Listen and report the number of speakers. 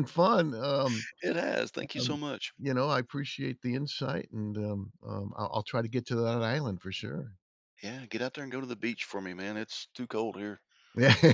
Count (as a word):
two